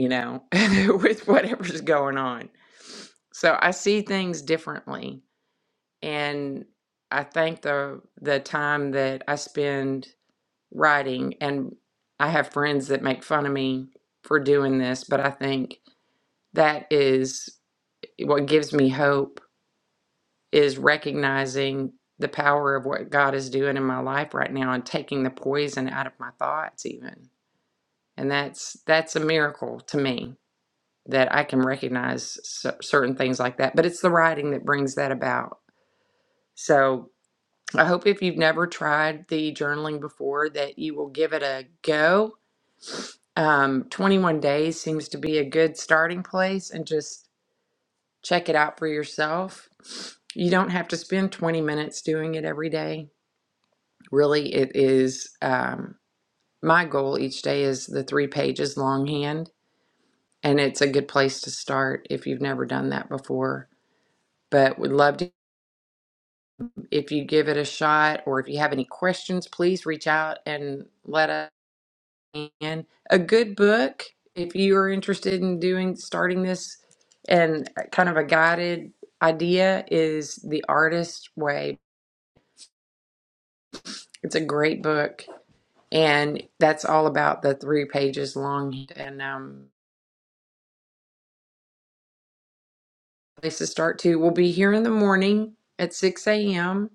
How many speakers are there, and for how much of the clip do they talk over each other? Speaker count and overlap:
one, no overlap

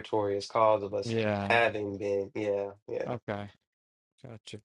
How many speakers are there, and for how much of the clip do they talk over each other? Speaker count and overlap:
two, about 13%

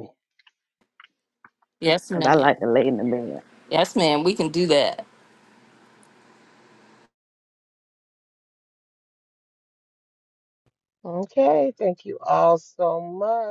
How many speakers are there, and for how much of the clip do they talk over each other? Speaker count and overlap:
three, about 2%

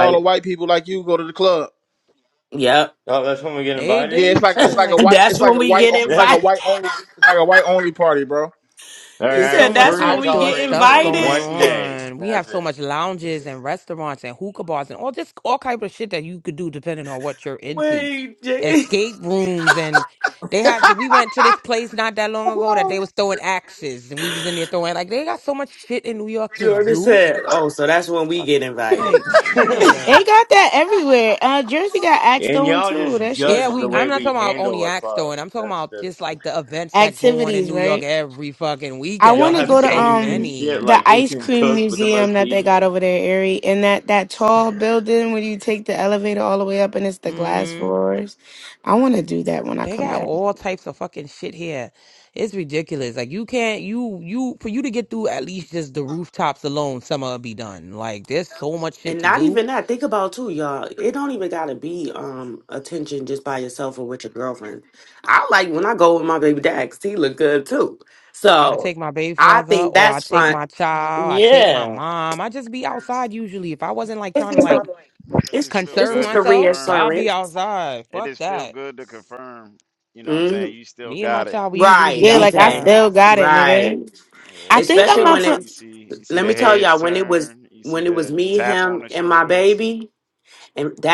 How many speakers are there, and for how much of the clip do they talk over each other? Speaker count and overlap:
six, about 34%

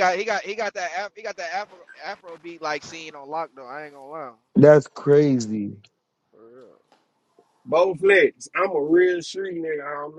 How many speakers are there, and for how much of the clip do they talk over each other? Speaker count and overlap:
three, no overlap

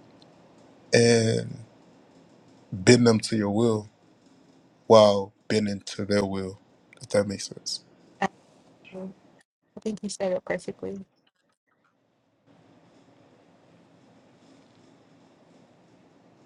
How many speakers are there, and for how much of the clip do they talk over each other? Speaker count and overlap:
two, no overlap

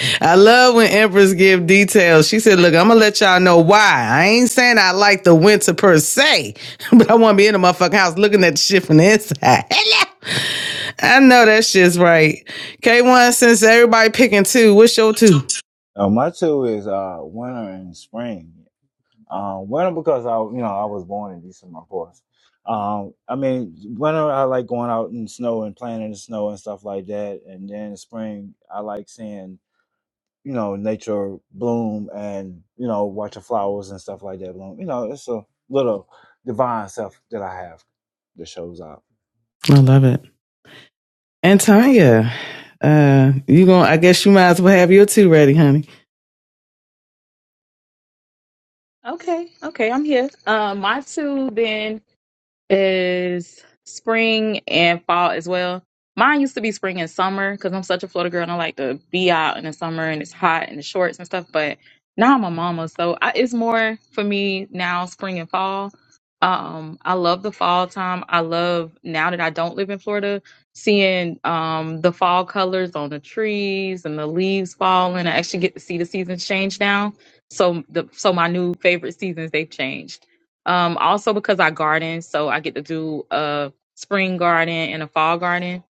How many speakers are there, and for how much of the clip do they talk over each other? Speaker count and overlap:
three, no overlap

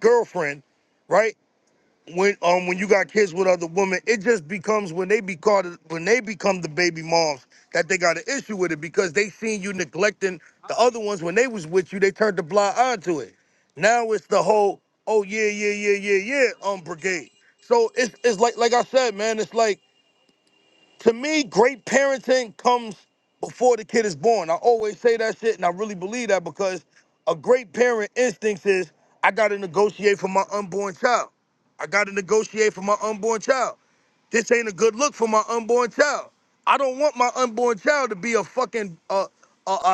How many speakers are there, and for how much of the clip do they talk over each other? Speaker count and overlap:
one, no overlap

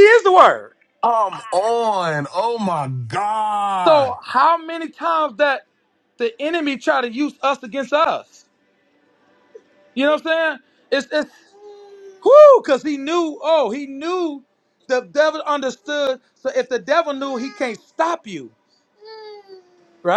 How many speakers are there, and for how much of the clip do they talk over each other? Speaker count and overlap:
two, about 1%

